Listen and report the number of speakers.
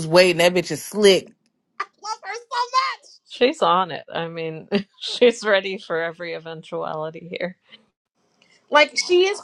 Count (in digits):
3